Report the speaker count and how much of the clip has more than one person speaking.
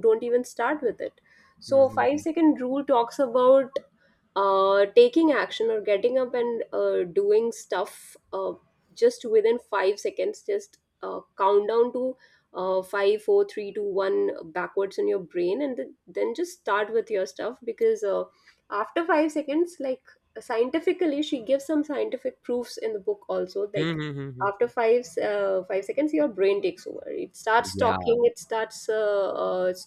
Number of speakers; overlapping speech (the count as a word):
two, about 3%